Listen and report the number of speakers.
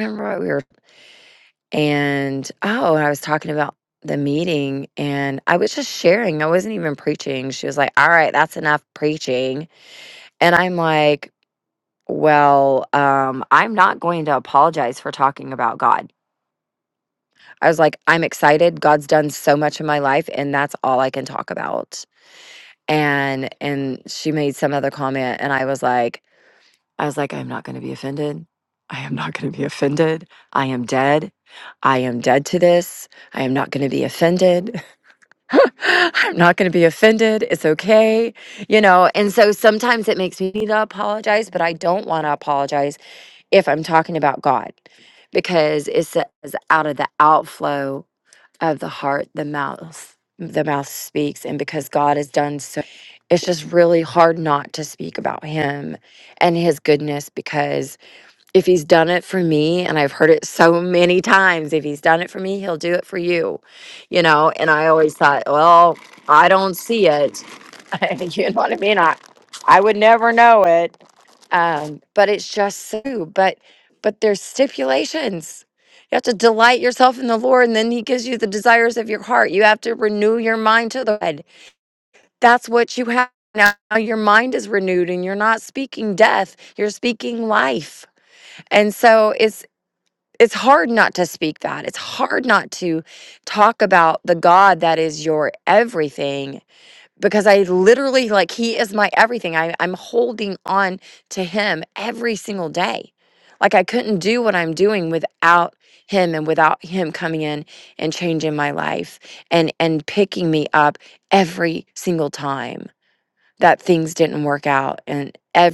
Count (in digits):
1